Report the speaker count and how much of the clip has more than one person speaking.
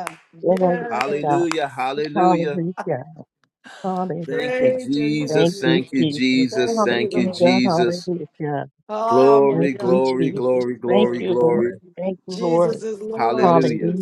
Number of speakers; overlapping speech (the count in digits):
3, about 62%